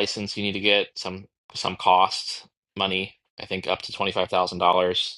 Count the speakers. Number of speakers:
1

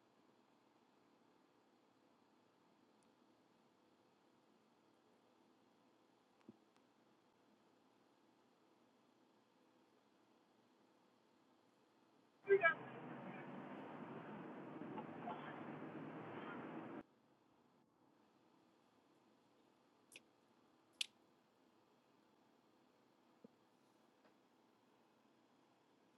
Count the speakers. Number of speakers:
0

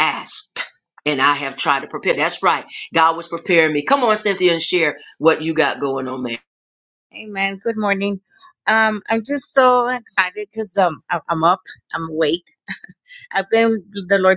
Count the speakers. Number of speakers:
2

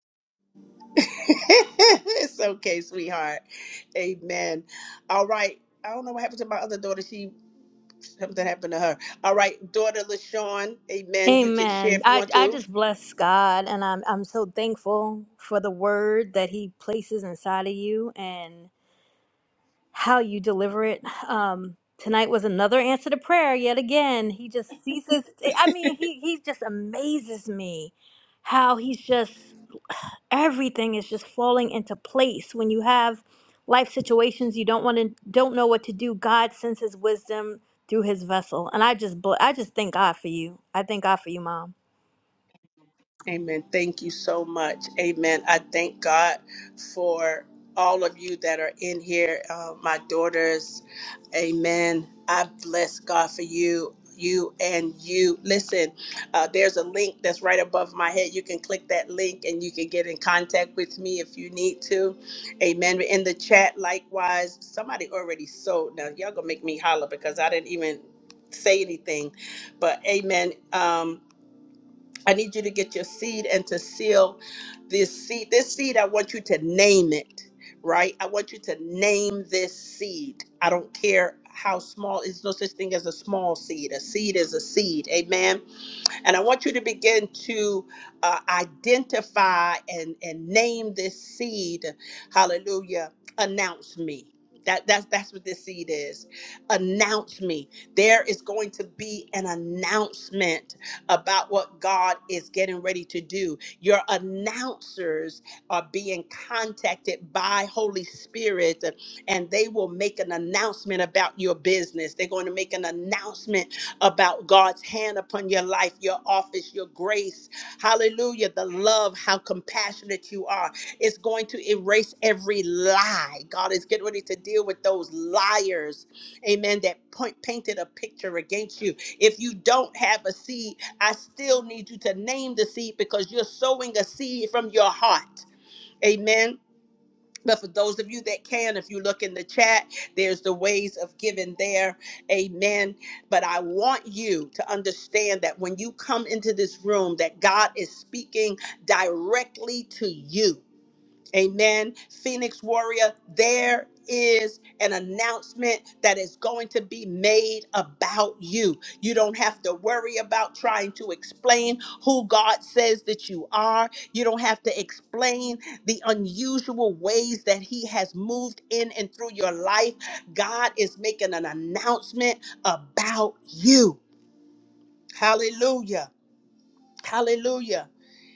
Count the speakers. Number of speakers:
2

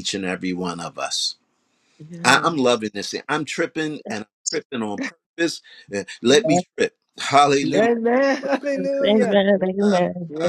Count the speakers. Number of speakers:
3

